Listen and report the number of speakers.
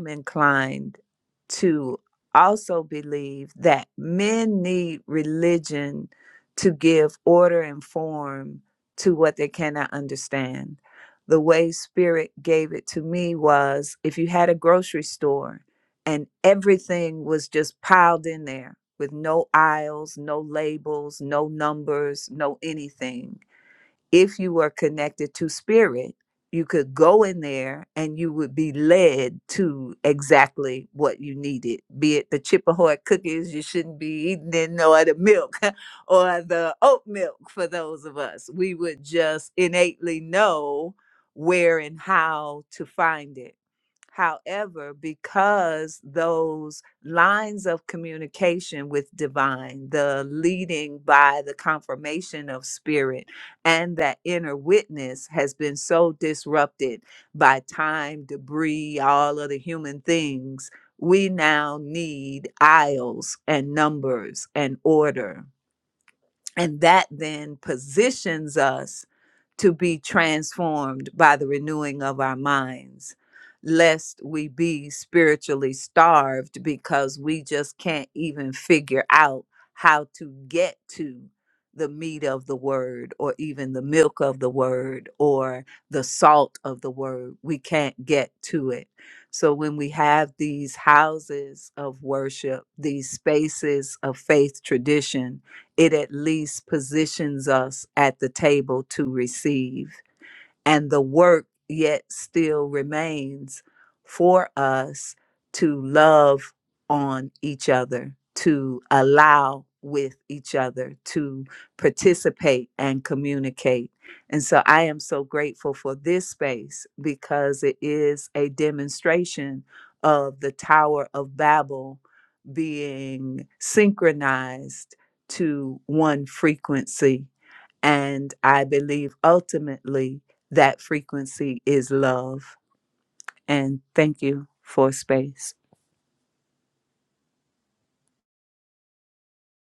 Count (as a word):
one